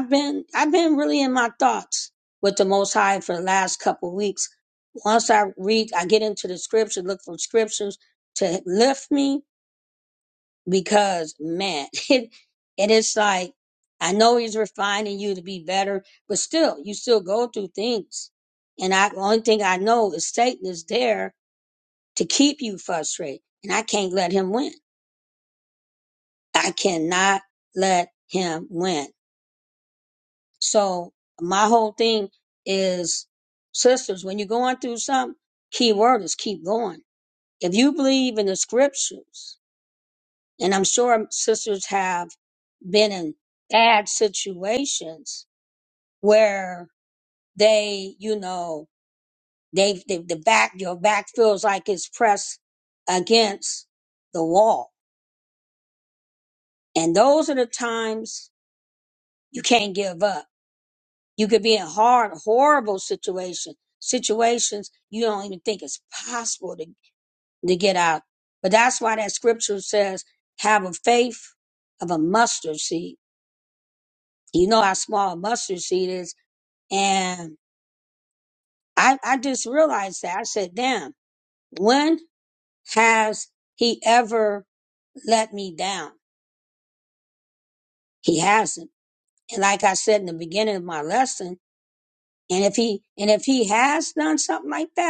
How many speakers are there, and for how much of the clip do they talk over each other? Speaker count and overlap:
one, no overlap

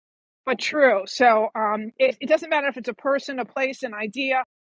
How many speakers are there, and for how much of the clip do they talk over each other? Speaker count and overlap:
one, no overlap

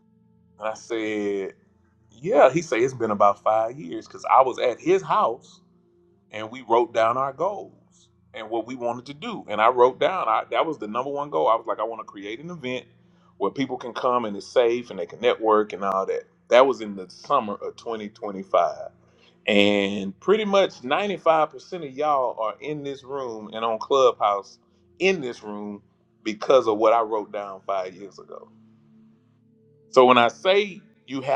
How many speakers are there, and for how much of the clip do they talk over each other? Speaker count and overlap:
one, no overlap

